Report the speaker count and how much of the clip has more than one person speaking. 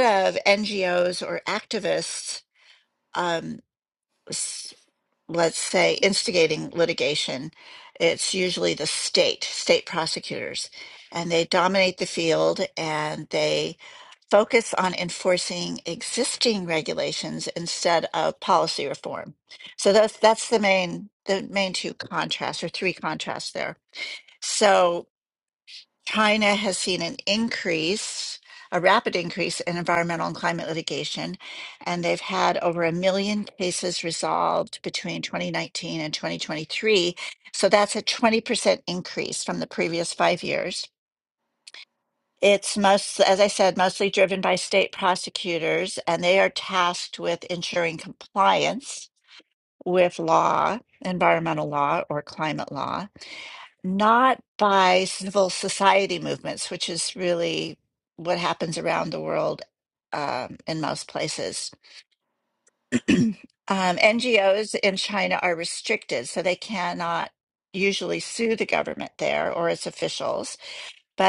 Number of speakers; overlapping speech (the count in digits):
1, no overlap